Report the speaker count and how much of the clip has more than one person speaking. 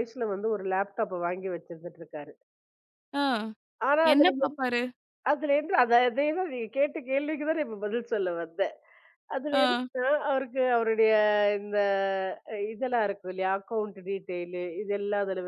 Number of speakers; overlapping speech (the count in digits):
2, about 5%